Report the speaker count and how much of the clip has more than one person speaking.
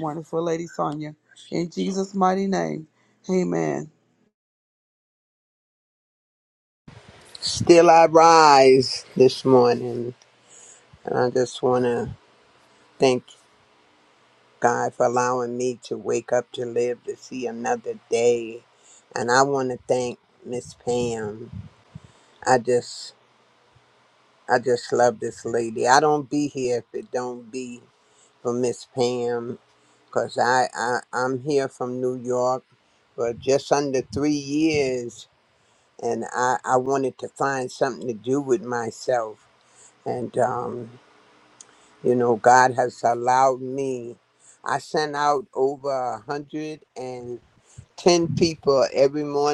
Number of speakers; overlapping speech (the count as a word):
two, no overlap